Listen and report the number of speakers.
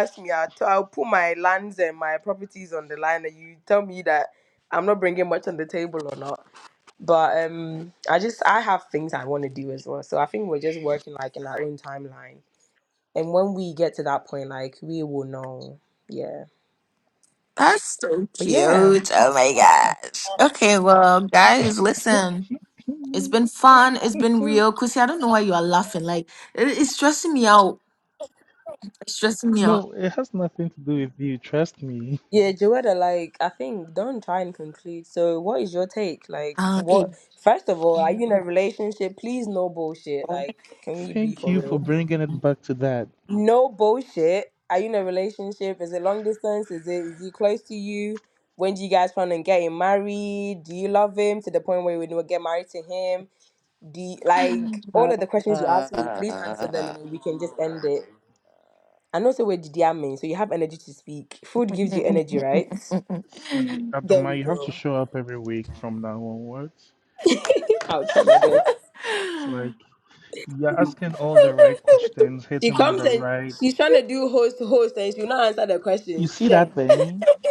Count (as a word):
three